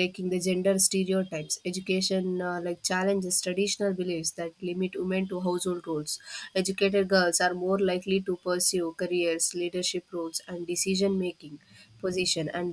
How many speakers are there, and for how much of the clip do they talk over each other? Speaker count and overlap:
1, no overlap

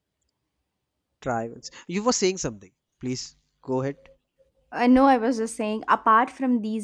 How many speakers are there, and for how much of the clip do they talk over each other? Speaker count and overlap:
2, no overlap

